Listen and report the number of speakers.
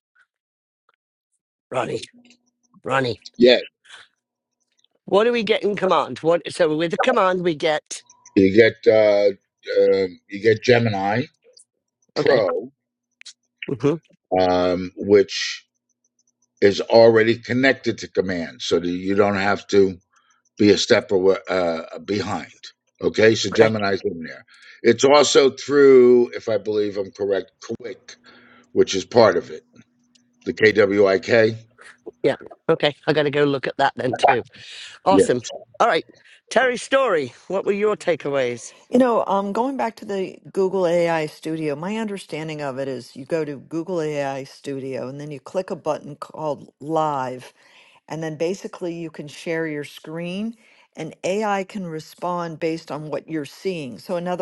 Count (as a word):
three